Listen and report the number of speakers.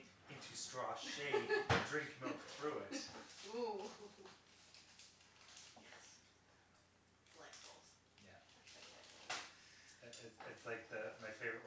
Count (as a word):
two